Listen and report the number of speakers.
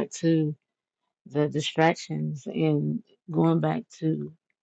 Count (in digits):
1